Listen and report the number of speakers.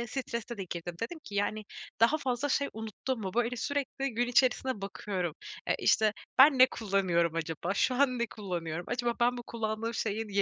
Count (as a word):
one